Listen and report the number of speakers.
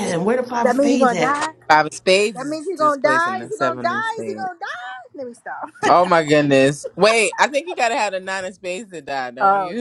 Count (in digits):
3